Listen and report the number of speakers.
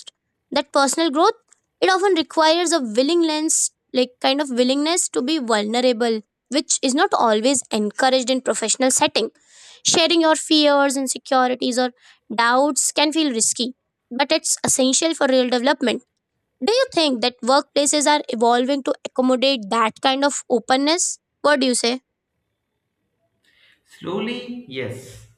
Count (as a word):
two